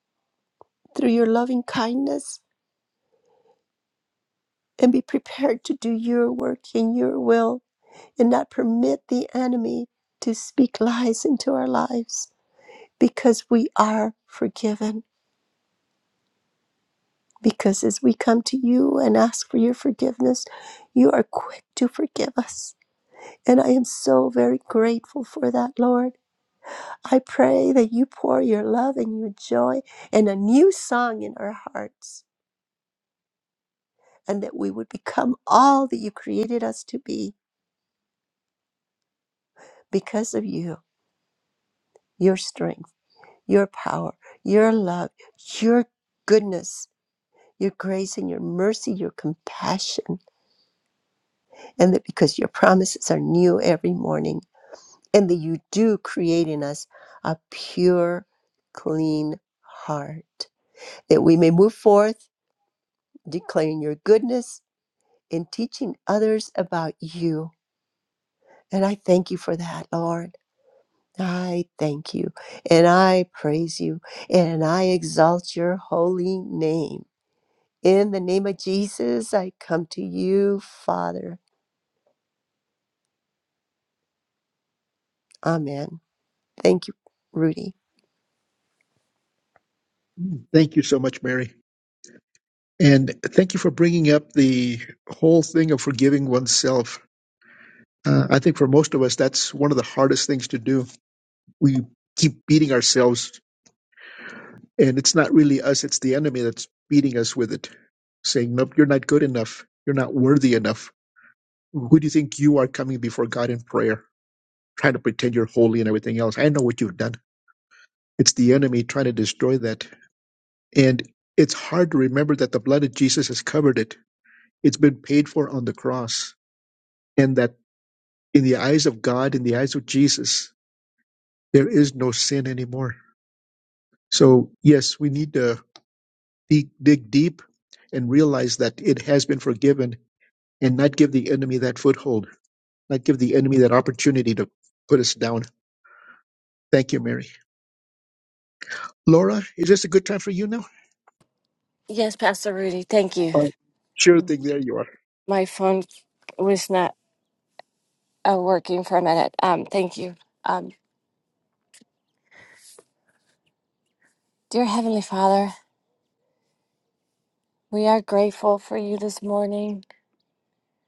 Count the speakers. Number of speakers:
3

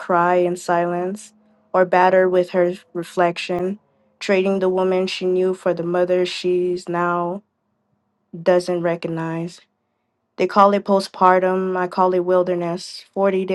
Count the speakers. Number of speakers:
1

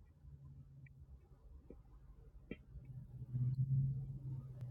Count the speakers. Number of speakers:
0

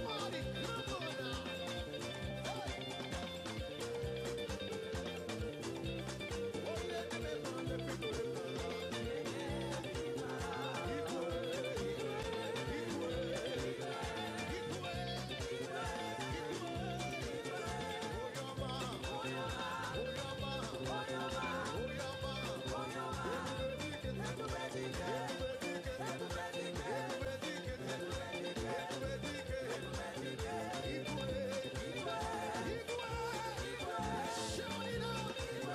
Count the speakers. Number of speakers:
0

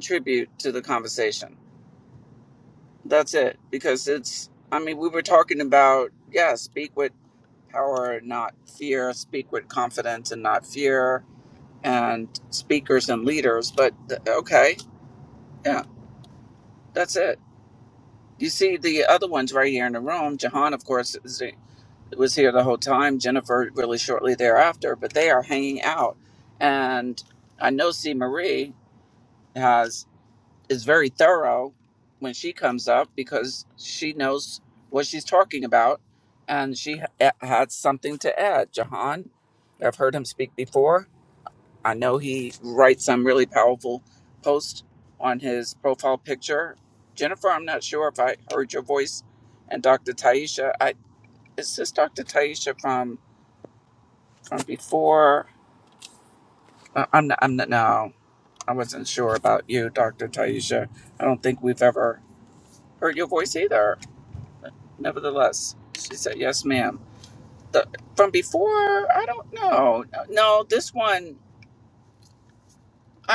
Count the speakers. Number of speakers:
1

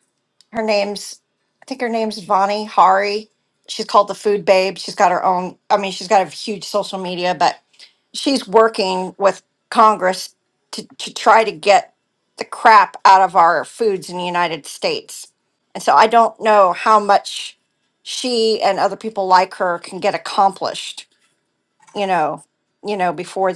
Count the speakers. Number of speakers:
1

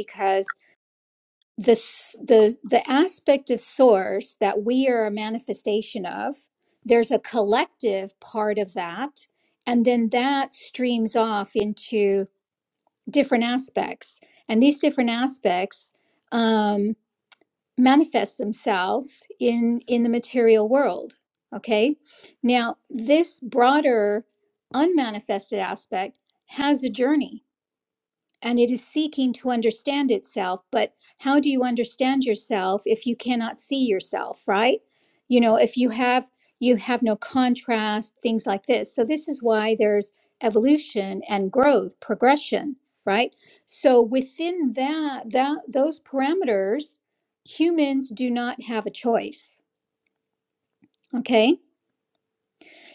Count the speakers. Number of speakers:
1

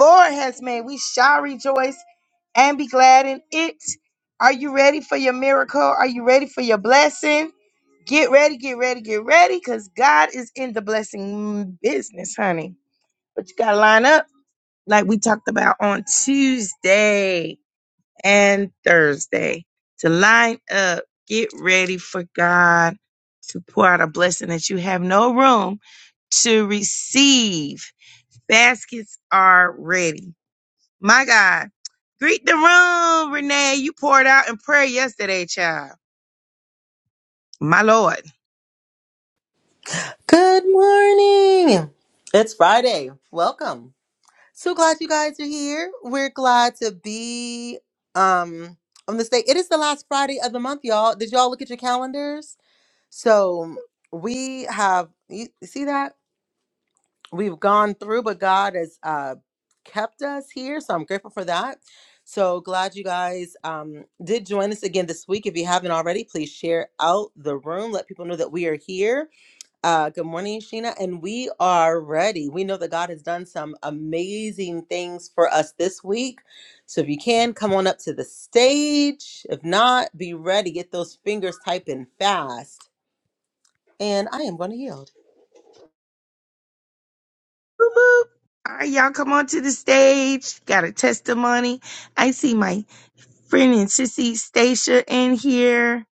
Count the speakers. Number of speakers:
2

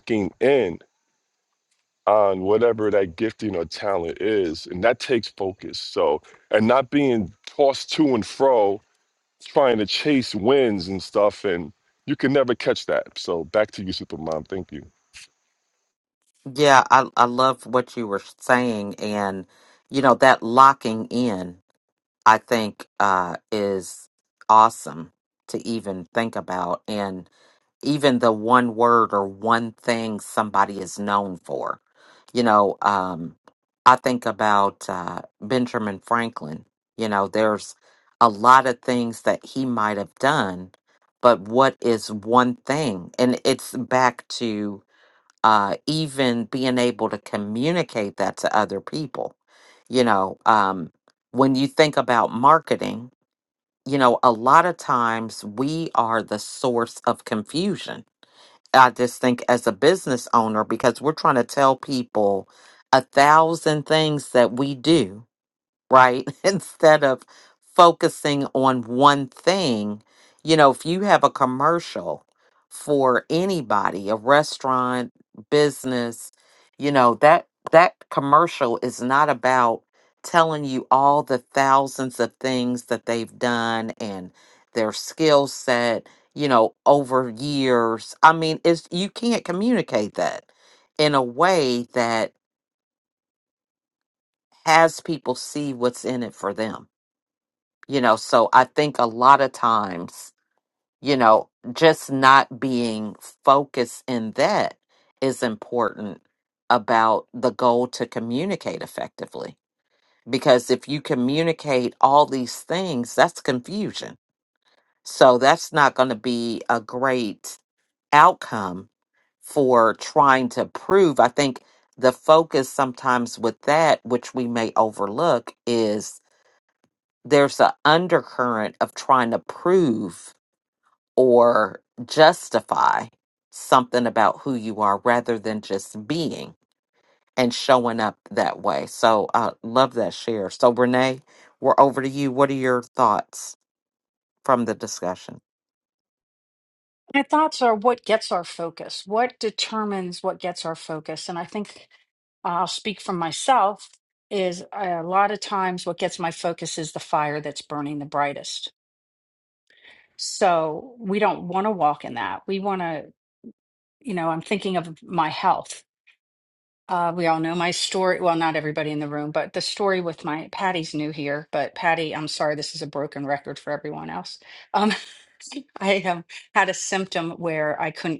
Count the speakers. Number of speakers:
3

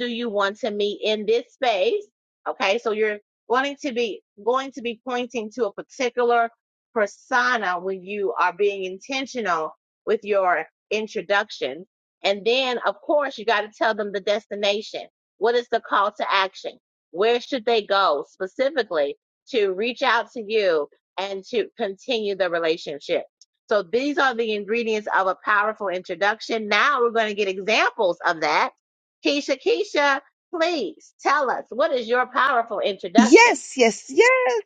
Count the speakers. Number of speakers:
2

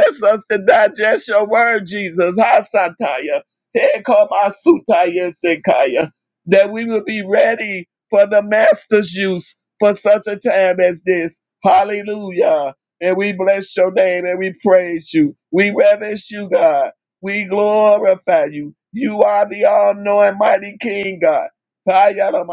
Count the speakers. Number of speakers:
1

